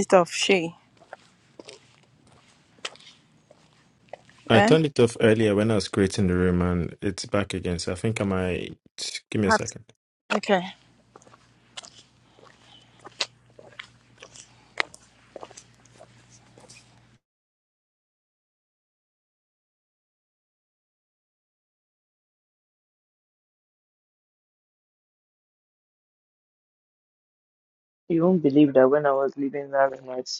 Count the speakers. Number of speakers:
3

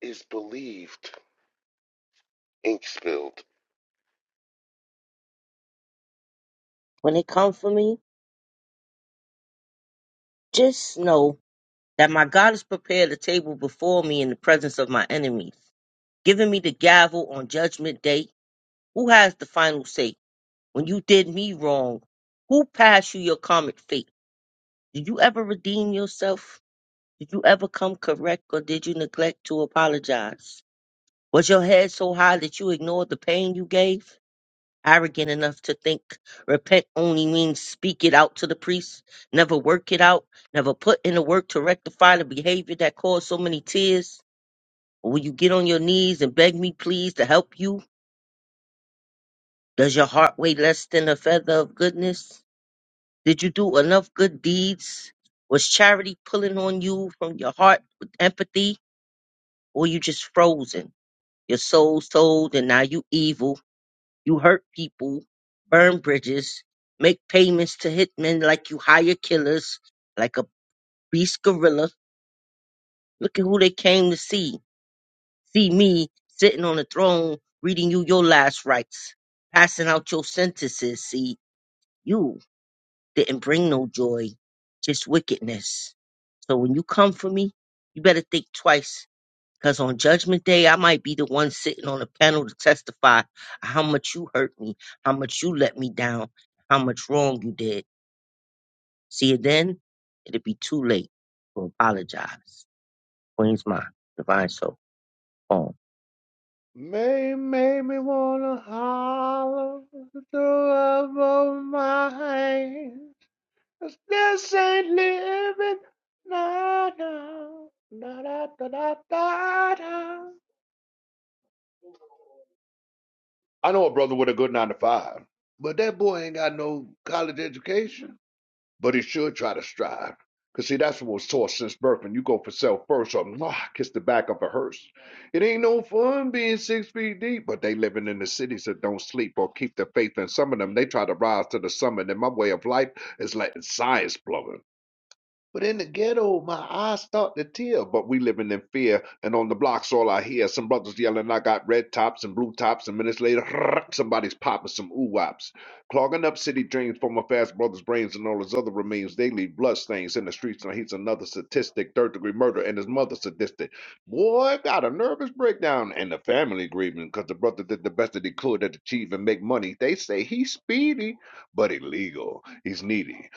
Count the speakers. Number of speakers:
3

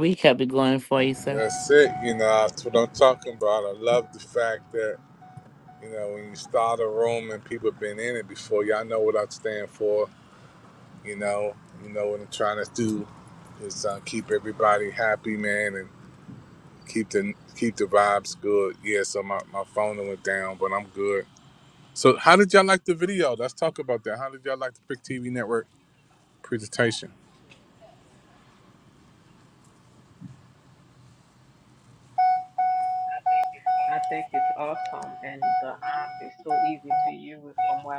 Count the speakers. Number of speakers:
3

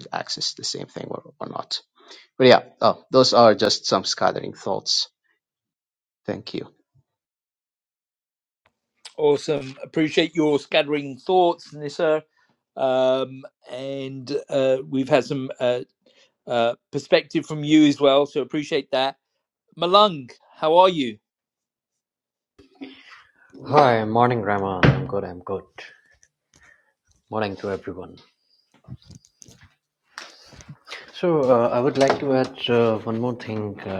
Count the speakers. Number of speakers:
3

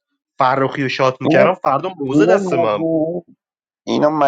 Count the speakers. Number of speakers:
2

